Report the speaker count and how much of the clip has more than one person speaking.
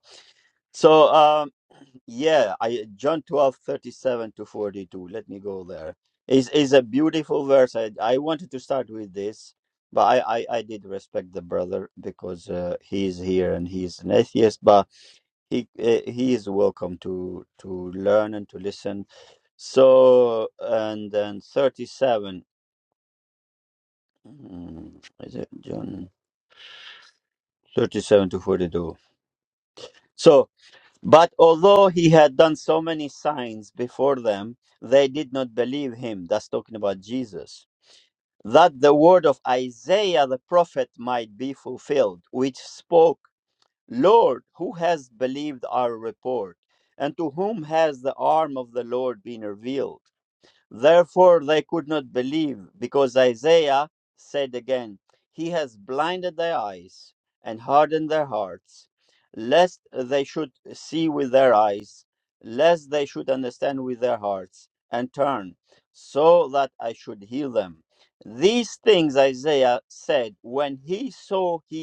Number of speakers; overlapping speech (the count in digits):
1, no overlap